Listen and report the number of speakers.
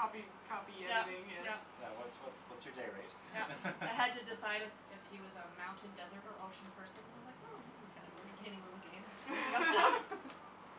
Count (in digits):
3